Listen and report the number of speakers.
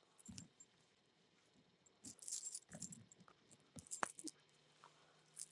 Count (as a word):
zero